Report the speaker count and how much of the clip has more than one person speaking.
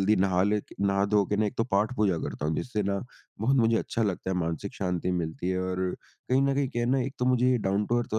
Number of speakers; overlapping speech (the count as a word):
one, no overlap